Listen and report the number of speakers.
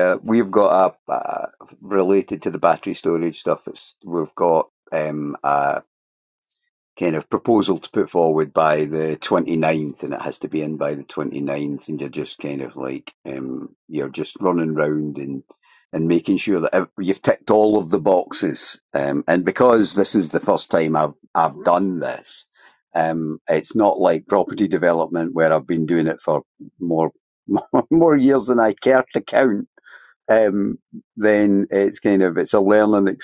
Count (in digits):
1